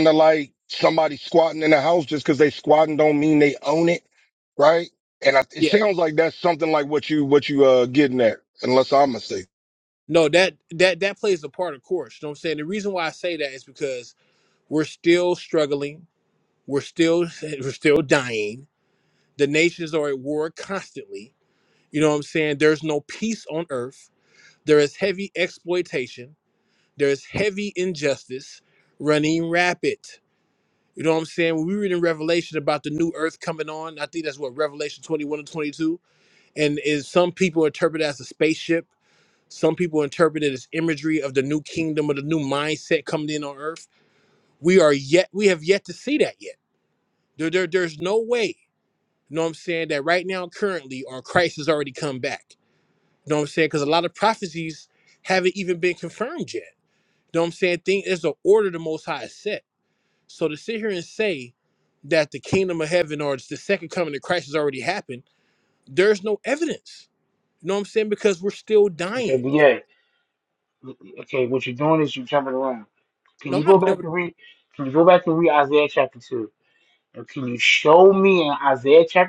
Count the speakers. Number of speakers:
3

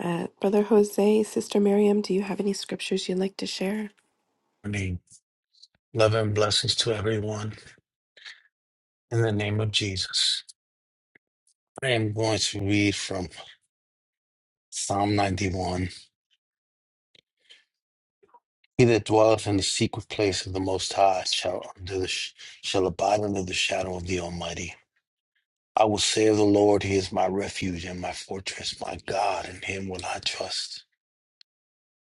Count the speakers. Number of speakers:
2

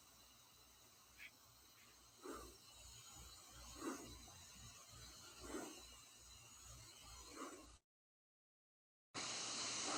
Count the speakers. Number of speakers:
0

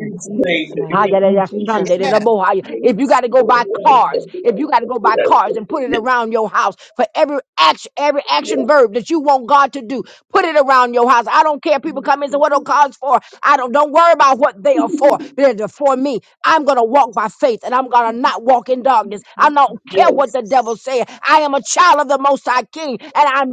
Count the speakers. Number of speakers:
2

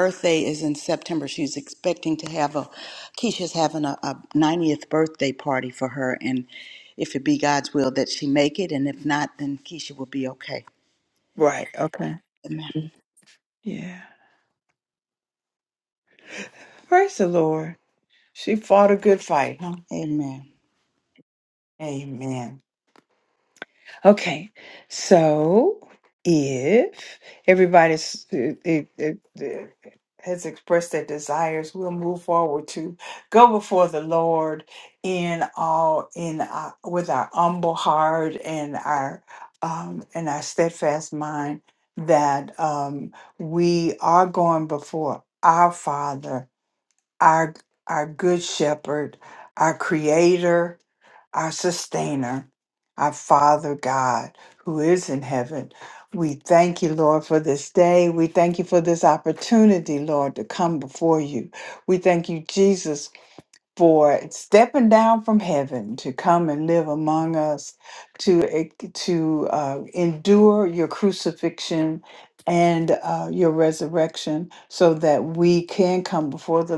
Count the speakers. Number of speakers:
2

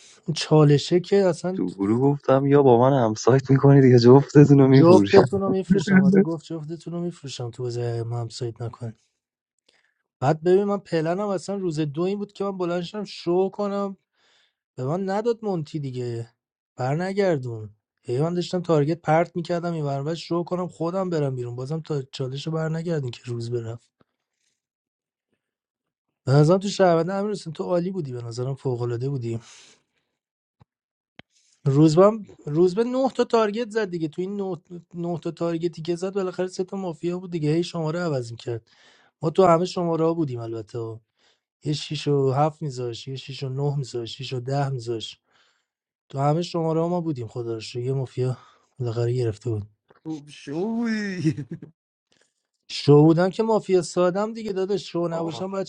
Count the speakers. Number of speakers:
3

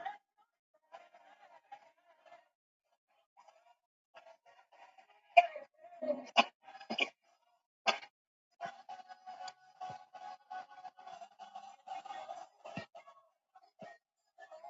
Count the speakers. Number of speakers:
0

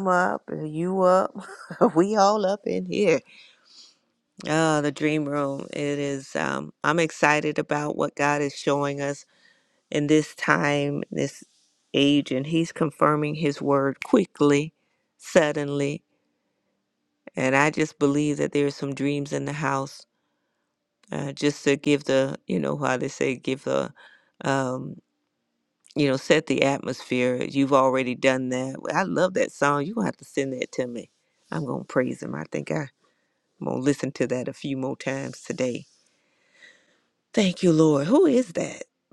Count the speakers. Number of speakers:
1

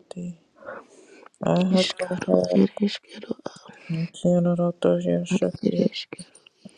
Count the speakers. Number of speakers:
2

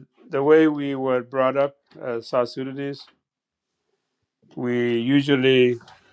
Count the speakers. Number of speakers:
1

